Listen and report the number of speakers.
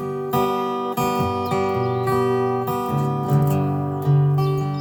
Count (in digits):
0